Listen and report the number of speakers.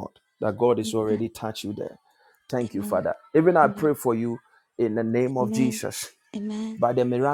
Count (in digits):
2